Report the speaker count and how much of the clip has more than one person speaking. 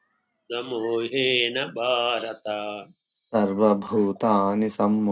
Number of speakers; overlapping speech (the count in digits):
2, no overlap